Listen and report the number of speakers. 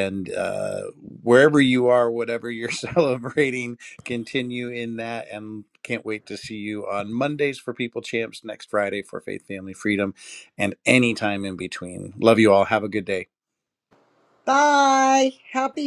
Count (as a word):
two